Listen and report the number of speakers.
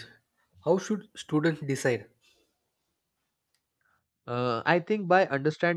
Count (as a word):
two